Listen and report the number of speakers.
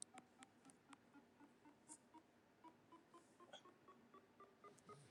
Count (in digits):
0